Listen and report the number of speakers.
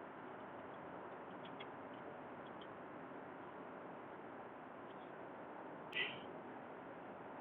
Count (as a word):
zero